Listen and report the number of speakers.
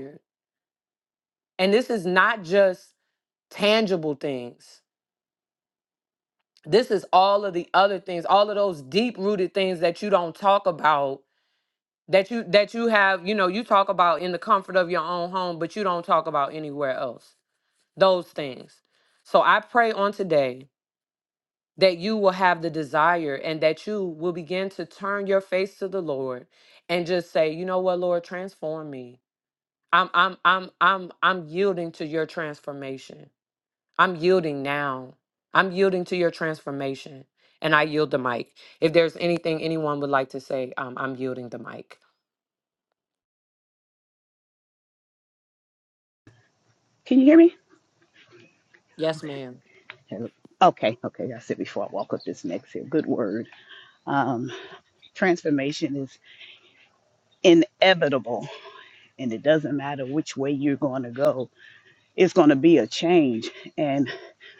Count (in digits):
2